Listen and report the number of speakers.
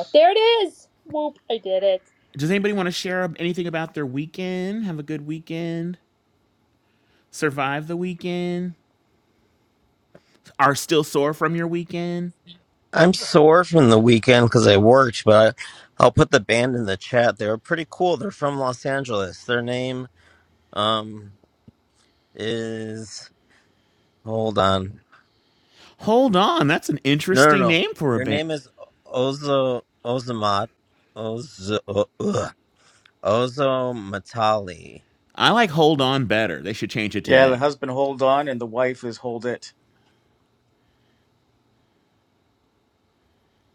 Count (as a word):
four